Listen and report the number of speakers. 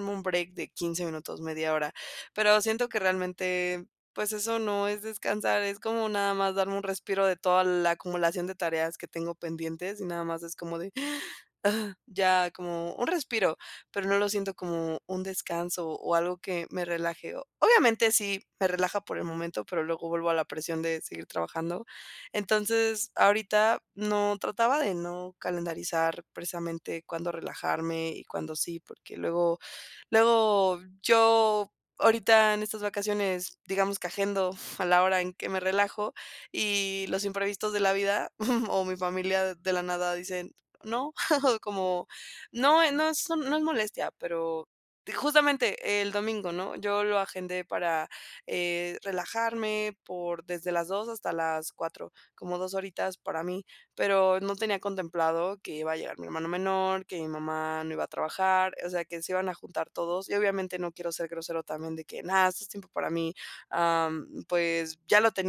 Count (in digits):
1